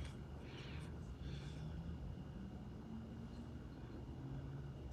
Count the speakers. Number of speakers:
0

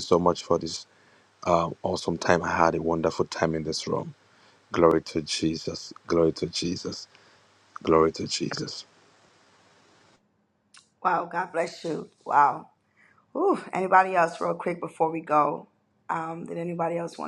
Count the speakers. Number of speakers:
2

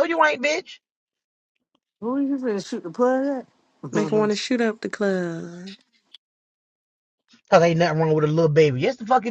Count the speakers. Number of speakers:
3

